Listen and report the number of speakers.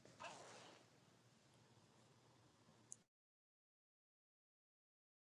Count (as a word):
zero